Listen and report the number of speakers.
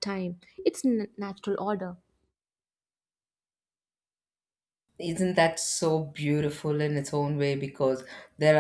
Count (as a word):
two